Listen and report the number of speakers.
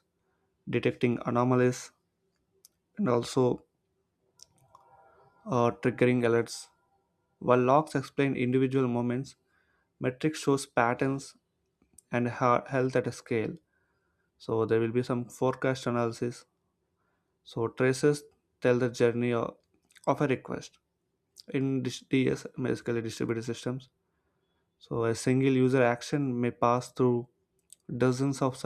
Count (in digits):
1